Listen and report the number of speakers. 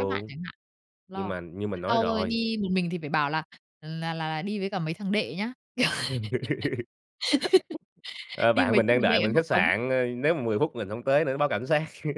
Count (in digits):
2